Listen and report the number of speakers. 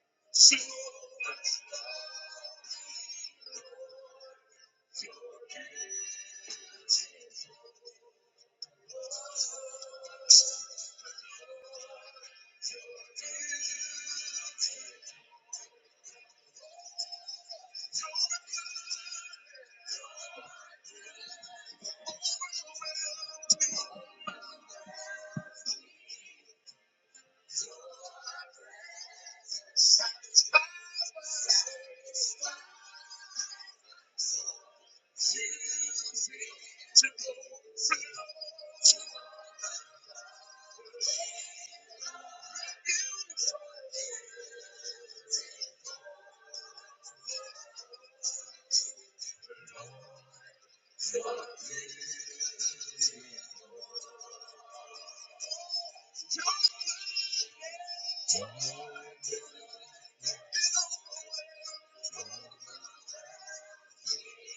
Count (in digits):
0